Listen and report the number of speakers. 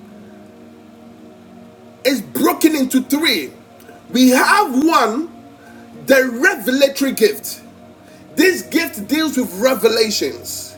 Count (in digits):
1